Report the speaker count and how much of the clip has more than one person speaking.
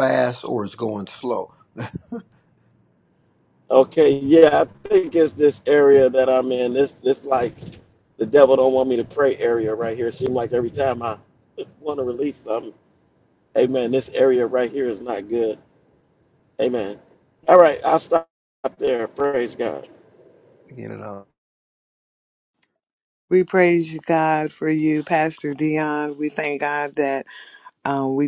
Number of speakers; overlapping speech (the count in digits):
3, no overlap